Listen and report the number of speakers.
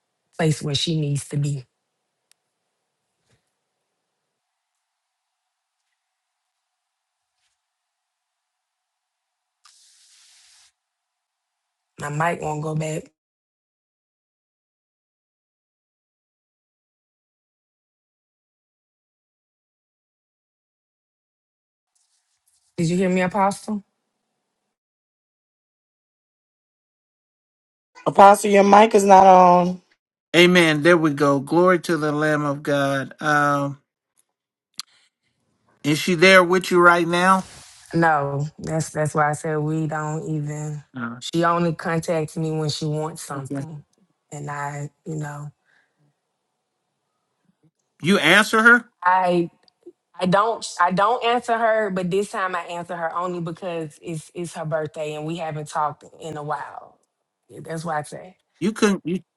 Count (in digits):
3